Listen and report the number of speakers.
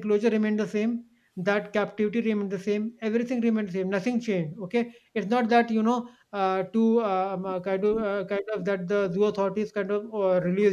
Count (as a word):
one